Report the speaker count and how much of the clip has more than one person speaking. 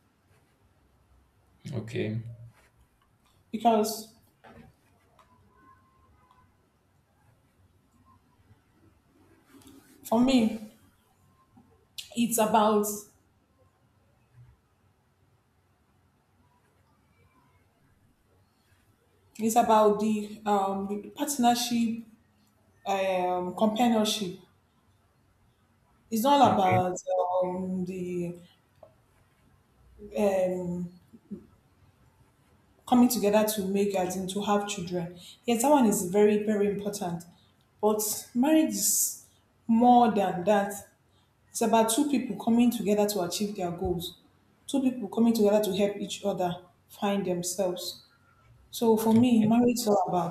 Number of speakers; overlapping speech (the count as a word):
two, about 2%